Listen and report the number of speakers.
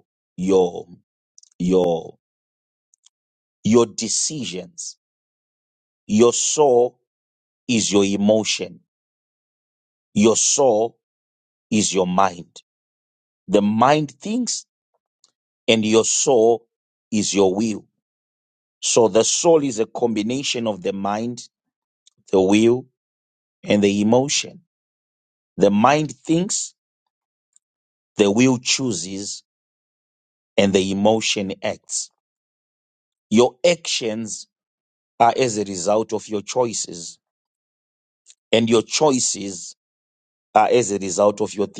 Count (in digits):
1